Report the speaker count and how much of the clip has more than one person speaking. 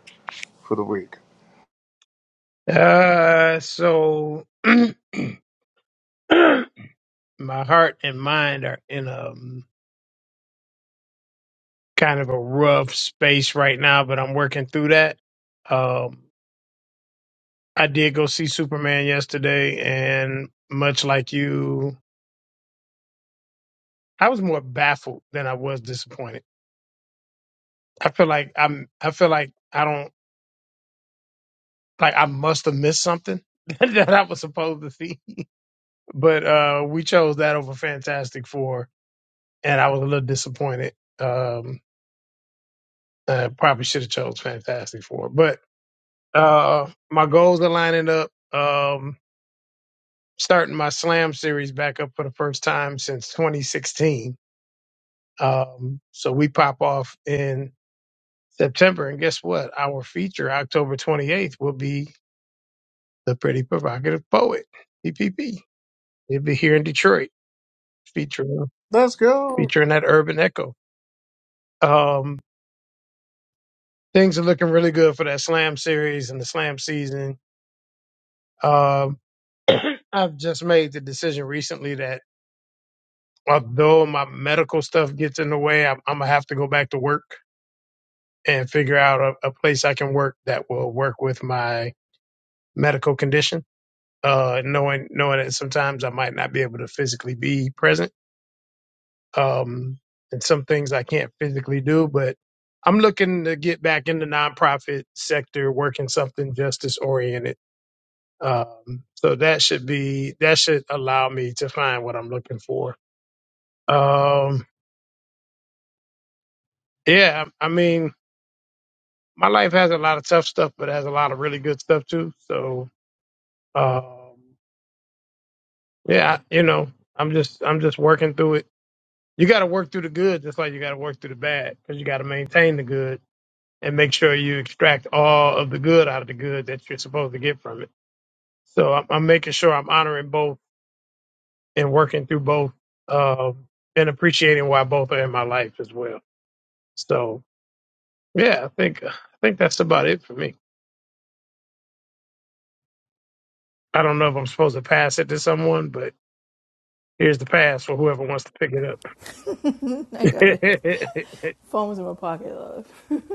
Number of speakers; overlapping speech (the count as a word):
three, under 1%